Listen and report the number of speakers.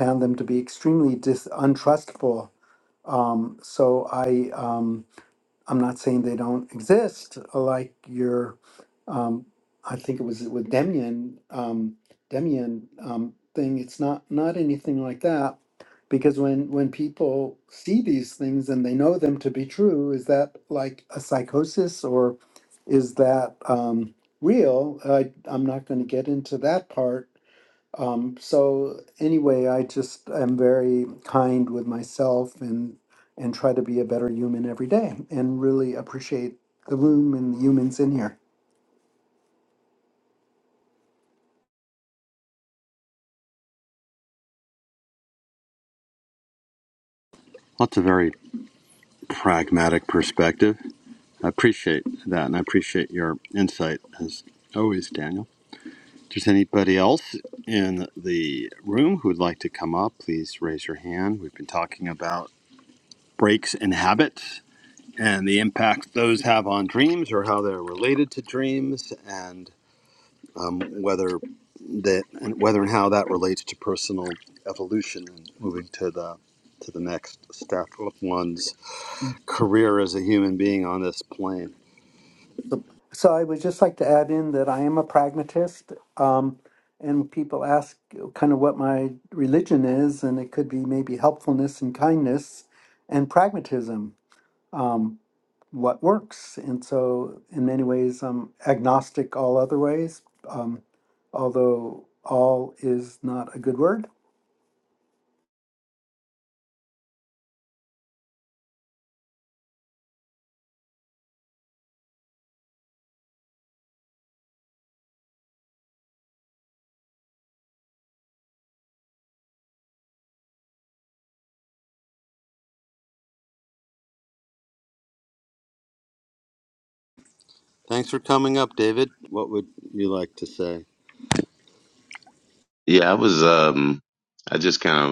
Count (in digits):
3